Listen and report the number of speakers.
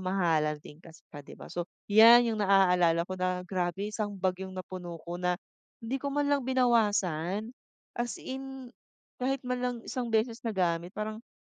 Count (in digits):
1